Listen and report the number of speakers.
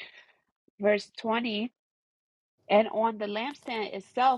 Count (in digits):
1